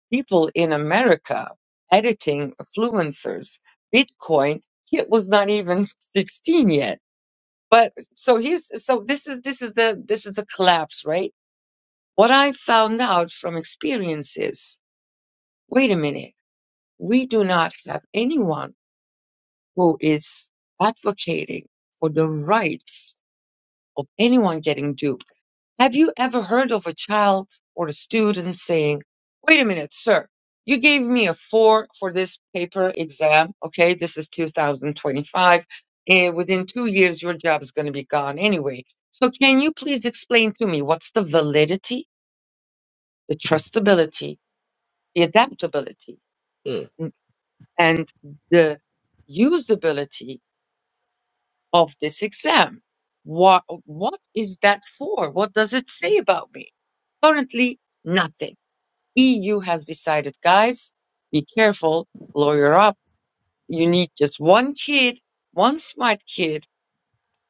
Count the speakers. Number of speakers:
one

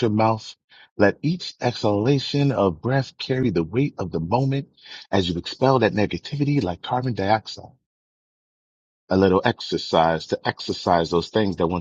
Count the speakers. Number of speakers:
one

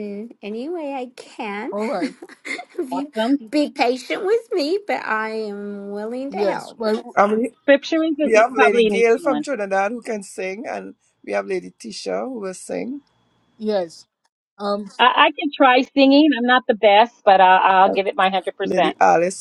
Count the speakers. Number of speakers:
four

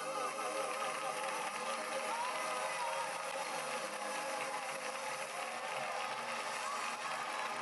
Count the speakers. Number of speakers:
zero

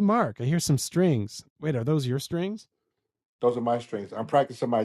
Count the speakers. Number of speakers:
two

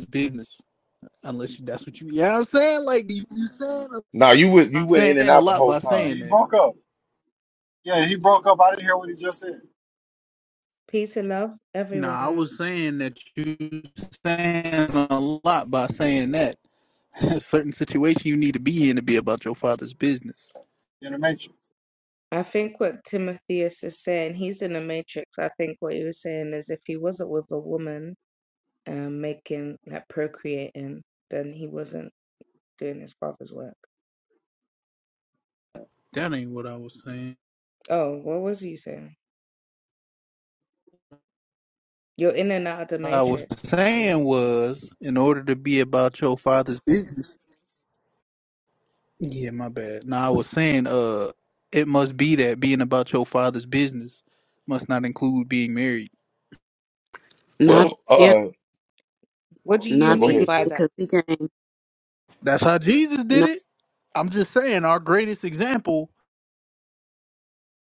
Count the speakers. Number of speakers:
five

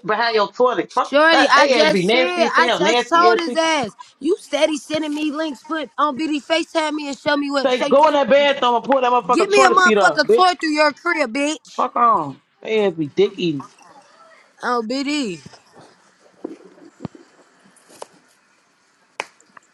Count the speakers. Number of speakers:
two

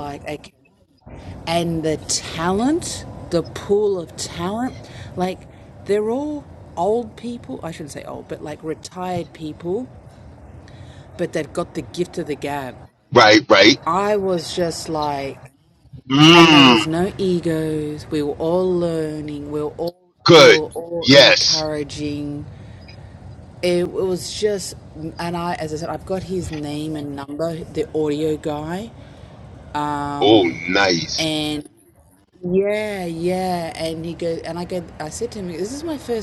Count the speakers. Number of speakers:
two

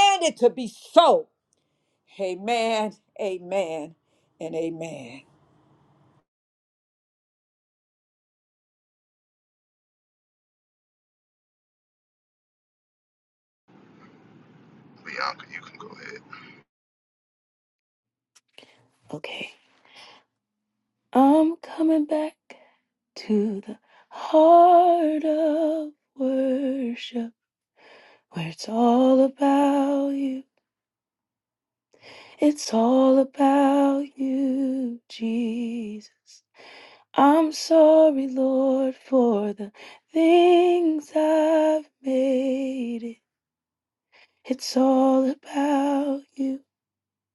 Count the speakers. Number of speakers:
three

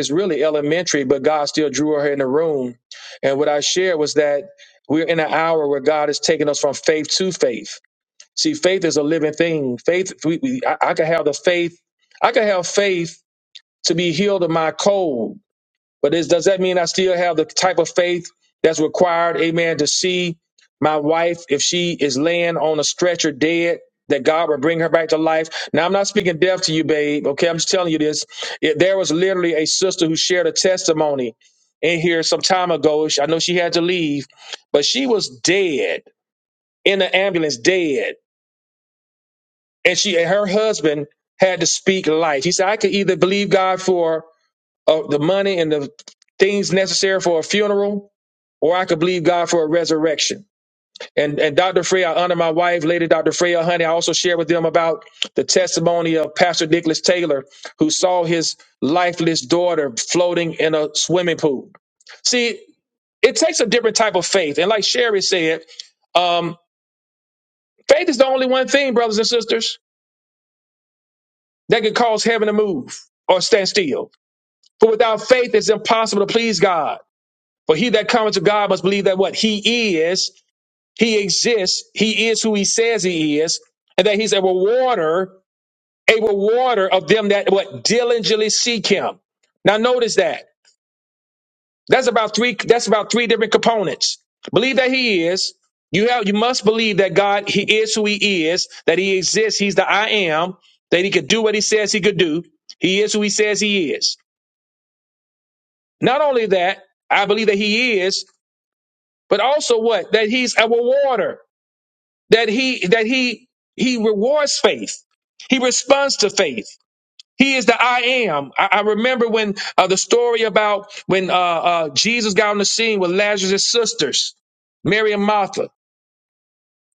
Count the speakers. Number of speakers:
one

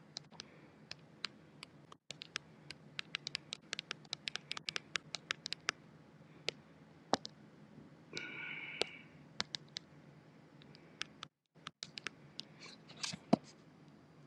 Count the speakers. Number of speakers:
zero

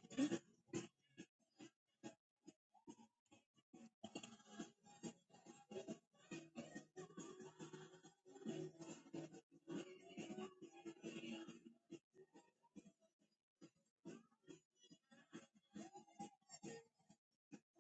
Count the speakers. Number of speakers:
zero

